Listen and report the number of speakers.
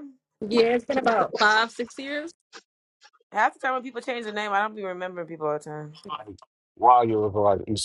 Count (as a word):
three